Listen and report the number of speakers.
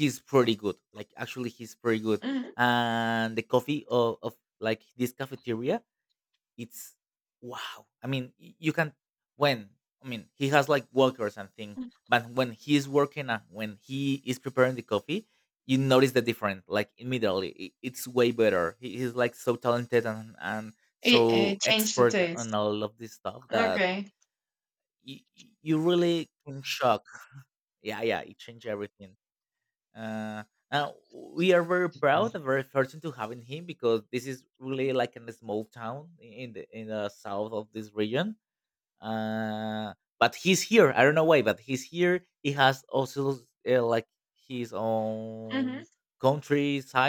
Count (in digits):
2